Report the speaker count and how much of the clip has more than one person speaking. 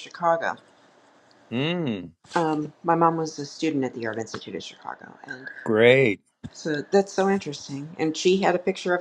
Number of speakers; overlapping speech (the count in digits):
2, no overlap